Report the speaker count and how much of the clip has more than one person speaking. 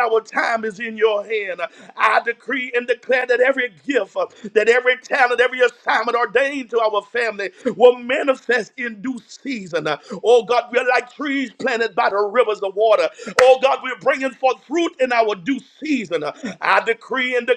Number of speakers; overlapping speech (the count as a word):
one, no overlap